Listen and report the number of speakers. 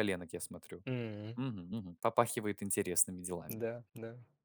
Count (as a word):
two